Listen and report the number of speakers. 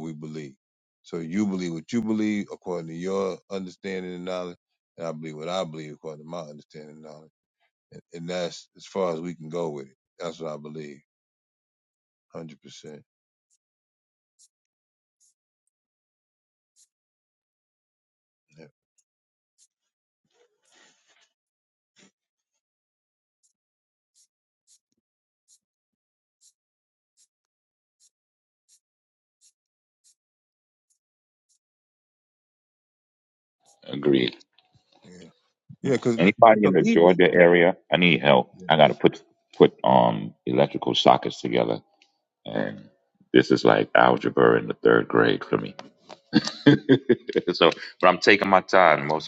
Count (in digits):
2